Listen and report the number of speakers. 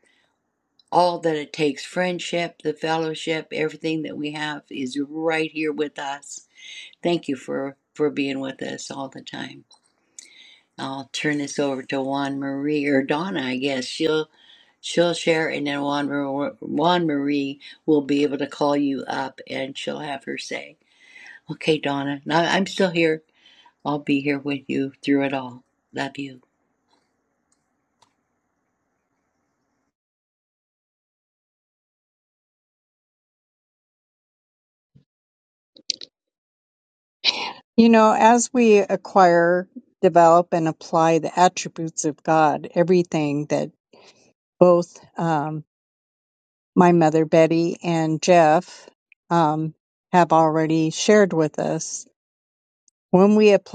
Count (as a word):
two